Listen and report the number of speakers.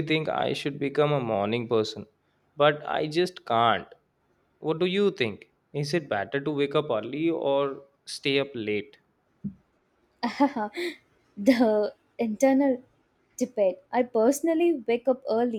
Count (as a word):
two